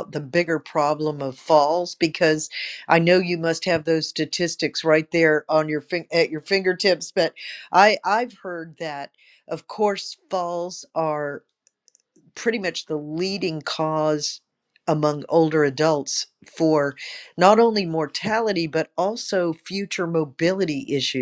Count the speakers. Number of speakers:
1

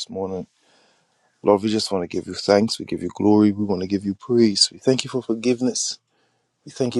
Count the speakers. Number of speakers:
1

